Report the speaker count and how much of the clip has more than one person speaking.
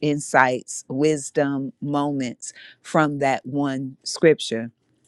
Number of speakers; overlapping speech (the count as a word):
one, no overlap